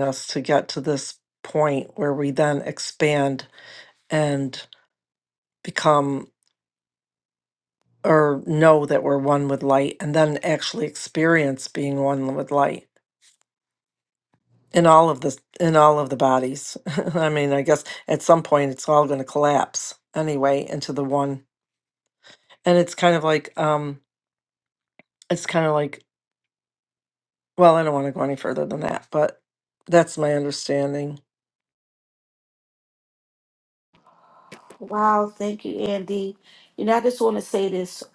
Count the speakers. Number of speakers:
2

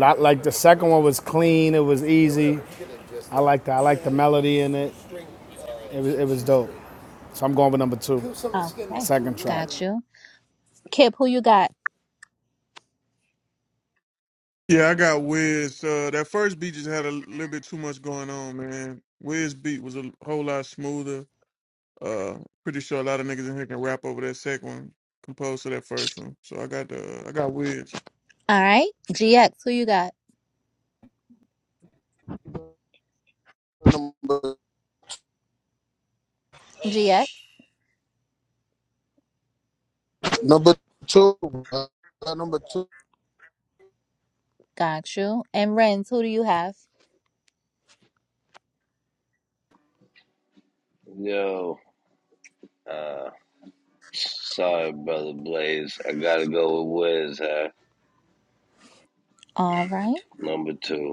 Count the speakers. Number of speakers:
5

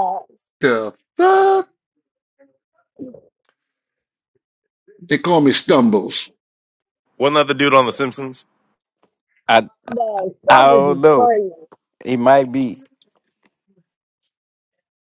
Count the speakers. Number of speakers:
4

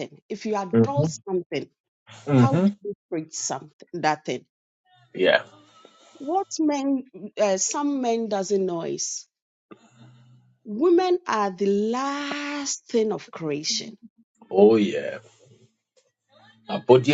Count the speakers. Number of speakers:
2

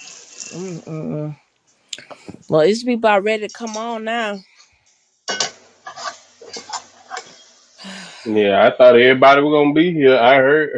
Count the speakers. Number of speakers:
2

